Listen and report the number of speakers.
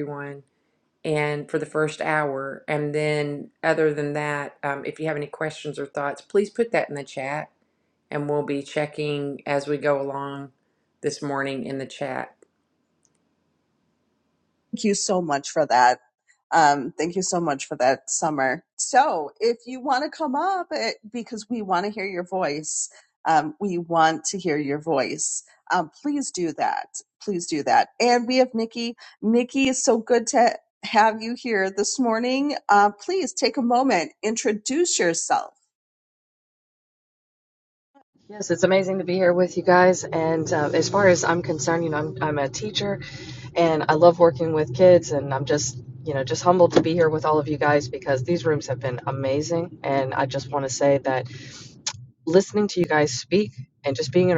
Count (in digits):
3